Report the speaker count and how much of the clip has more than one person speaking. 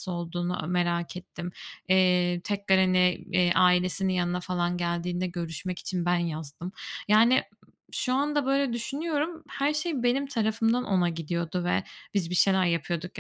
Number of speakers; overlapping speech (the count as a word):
one, no overlap